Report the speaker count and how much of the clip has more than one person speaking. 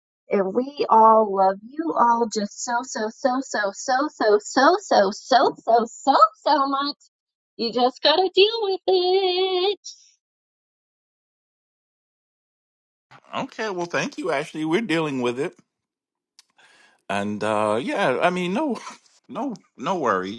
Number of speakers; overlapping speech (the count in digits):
2, no overlap